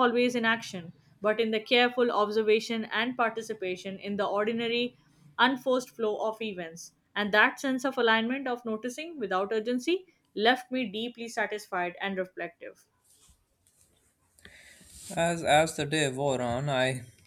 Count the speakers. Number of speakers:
2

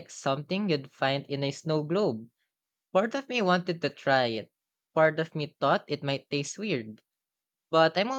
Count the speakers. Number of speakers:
1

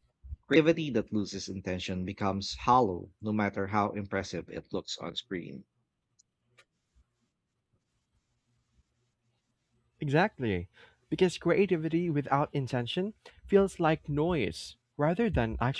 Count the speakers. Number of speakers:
2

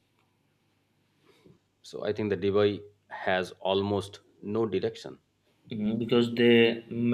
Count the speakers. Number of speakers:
2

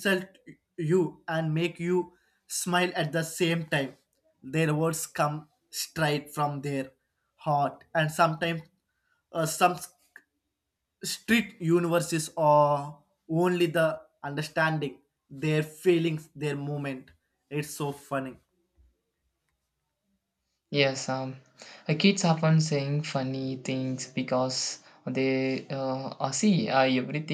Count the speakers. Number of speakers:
2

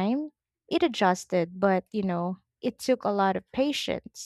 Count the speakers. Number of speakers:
1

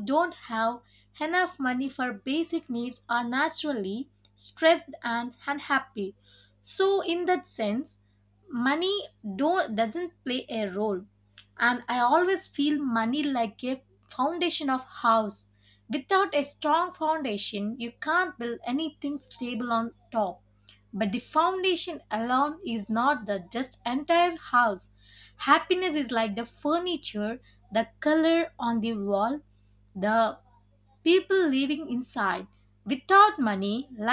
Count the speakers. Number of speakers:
1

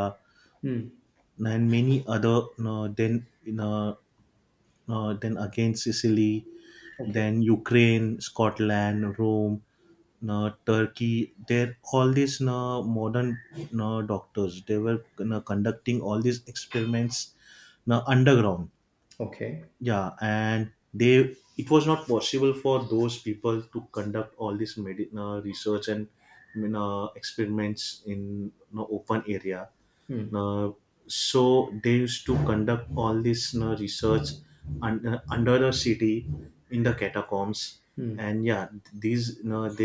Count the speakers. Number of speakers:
2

